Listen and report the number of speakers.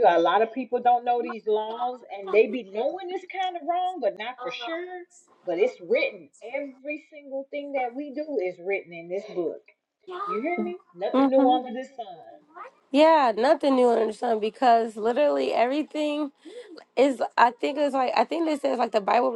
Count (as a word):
two